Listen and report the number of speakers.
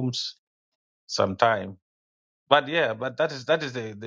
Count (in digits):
1